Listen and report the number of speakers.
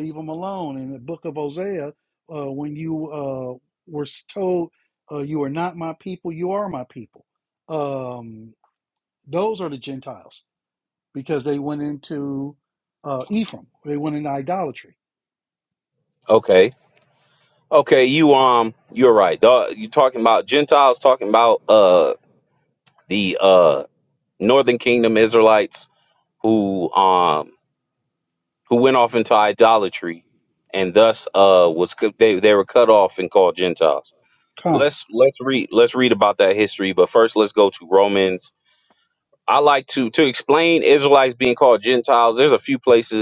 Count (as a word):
two